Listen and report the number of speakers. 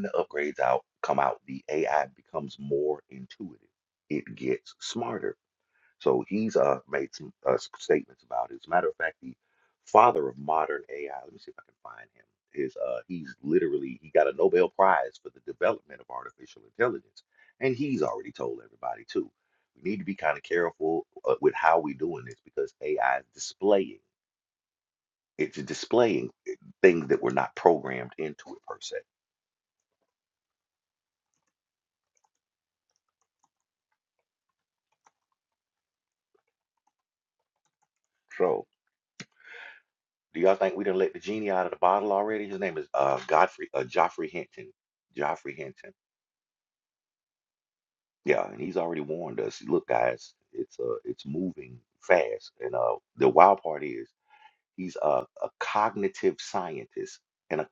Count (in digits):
1